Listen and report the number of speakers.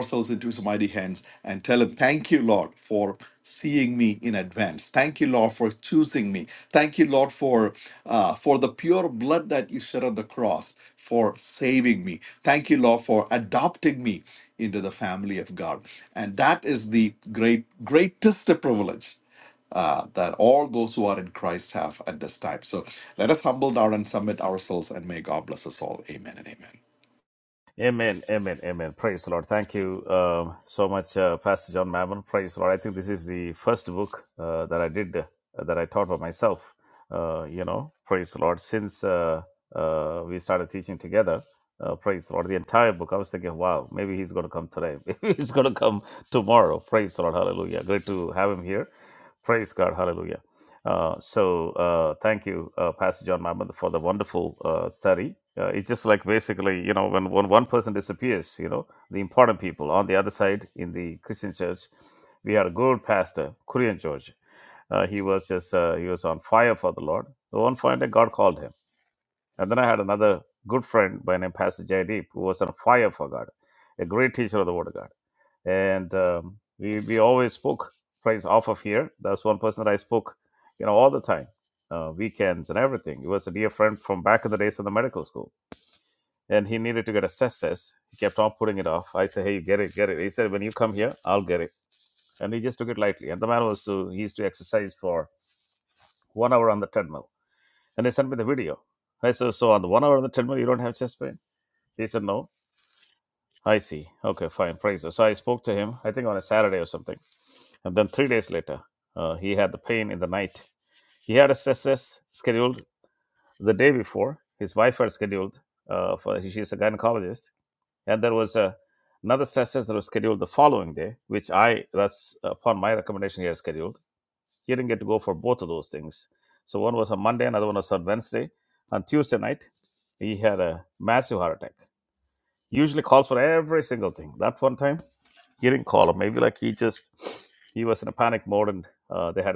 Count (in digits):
2